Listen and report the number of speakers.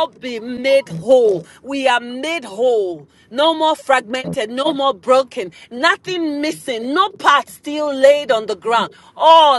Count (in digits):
1